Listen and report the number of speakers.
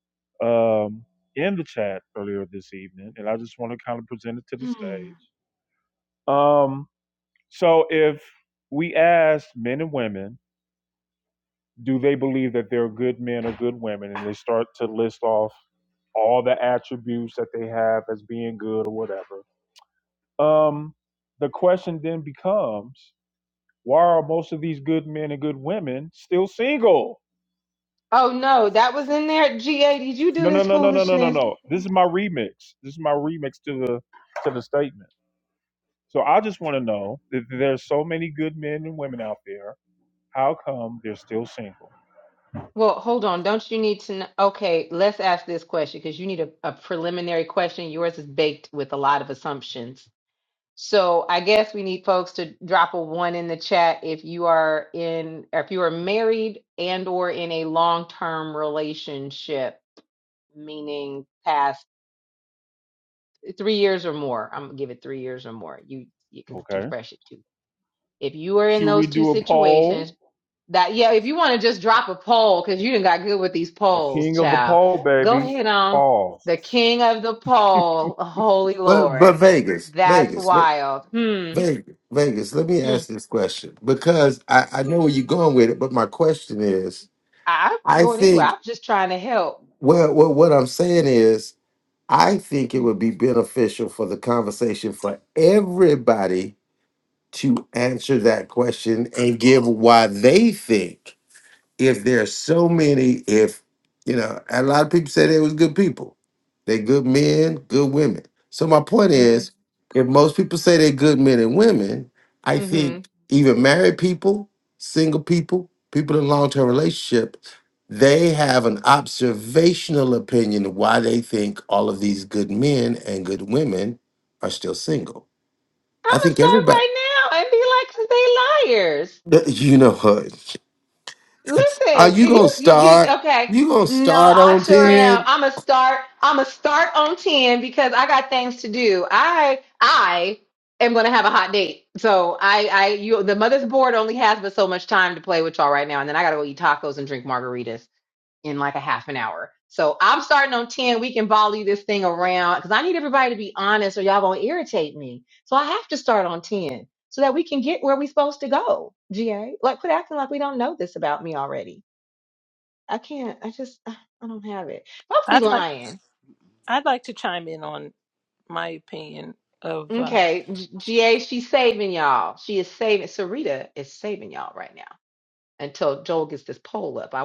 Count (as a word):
four